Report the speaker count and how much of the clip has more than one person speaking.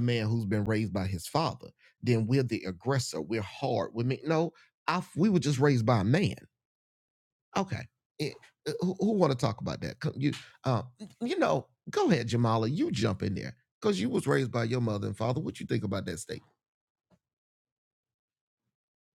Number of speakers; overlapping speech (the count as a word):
one, no overlap